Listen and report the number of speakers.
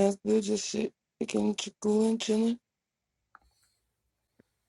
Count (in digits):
1